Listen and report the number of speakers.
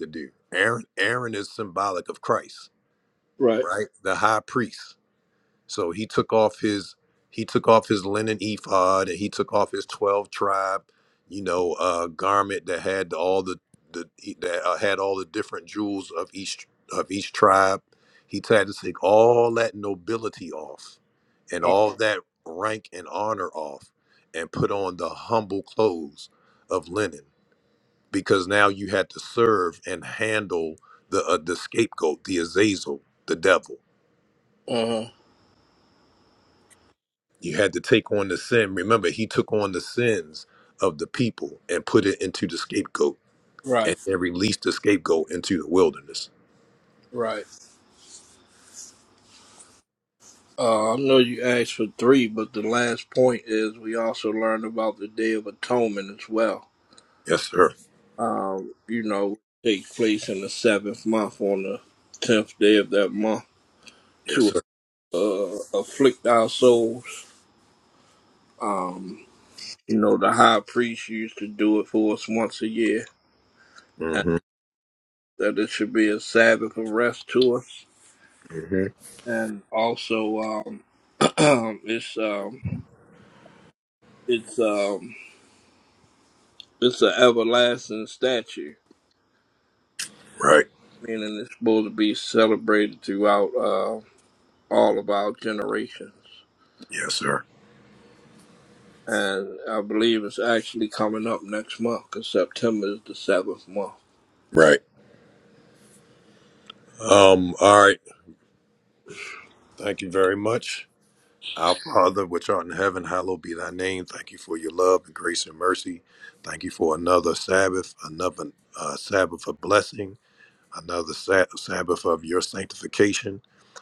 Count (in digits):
2